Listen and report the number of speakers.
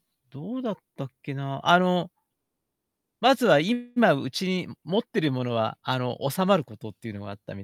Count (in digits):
1